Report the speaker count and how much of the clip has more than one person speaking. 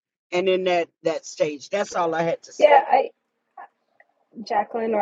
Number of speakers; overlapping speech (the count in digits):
2, about 5%